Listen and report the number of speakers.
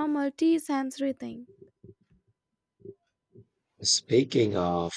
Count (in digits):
2